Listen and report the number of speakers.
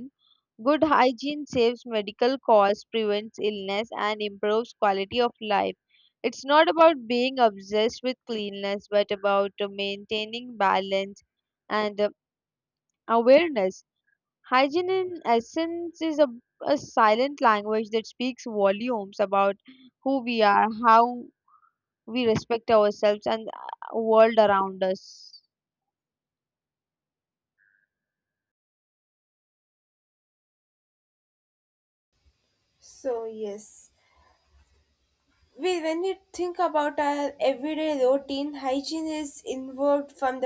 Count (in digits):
2